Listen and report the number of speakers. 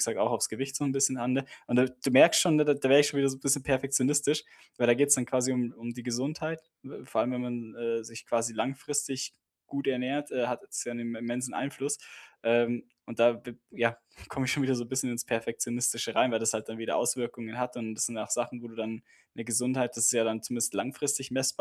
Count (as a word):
one